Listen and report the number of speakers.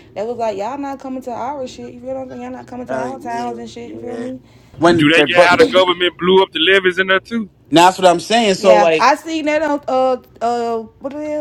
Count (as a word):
three